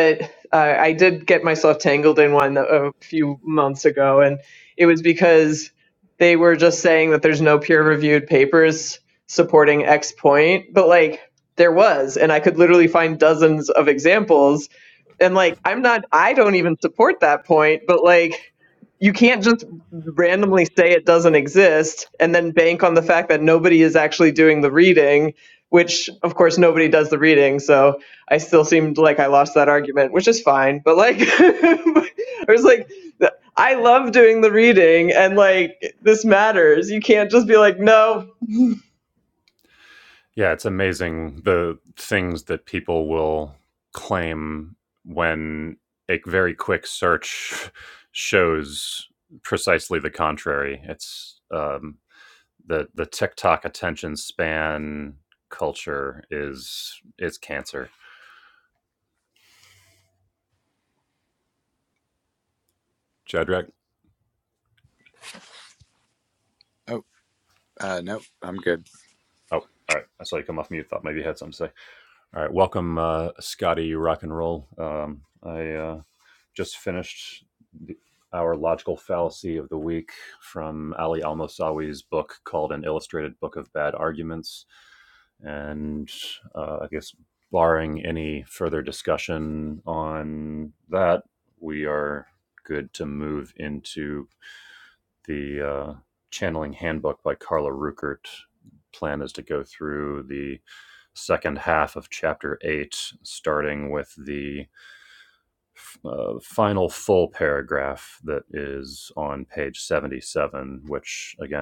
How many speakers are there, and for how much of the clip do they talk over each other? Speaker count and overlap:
3, no overlap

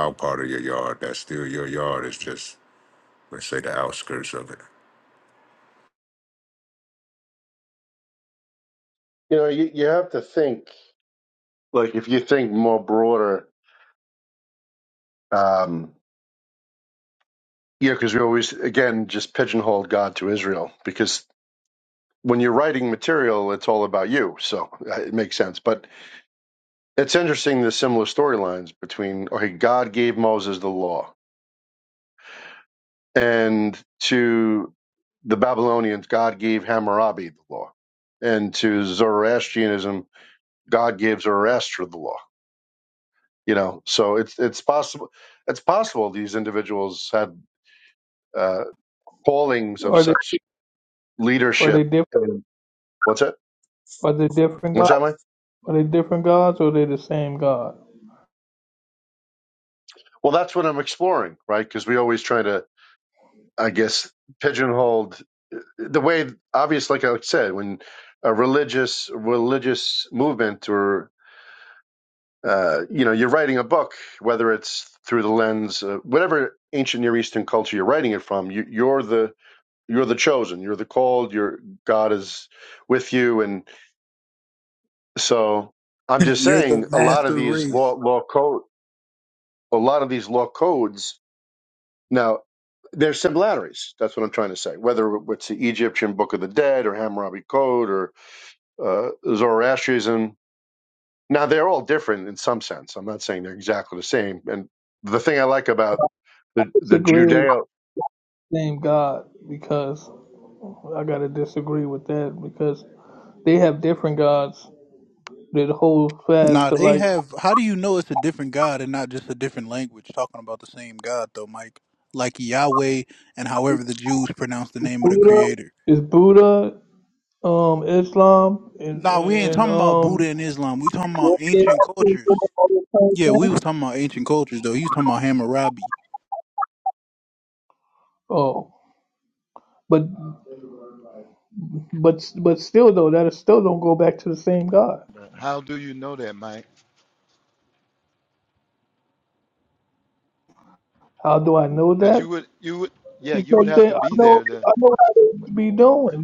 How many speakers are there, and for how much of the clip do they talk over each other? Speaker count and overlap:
5, about 5%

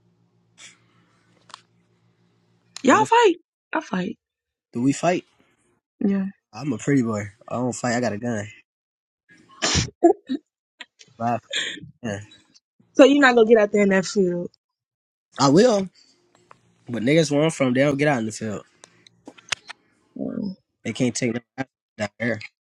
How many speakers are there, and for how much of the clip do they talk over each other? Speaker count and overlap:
2, about 1%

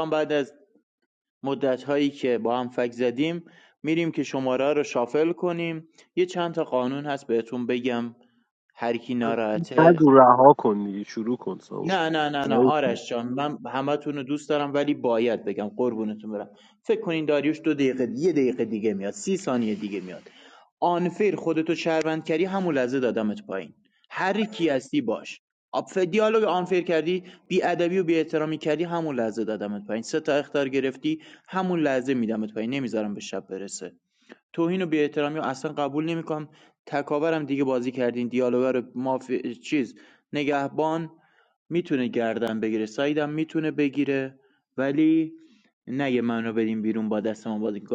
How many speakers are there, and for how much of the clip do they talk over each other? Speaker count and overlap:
2, about 1%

